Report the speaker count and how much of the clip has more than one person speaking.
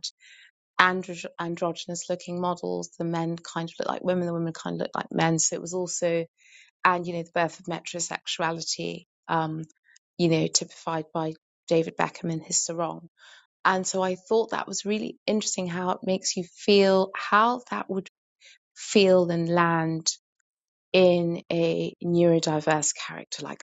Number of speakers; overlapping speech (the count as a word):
one, no overlap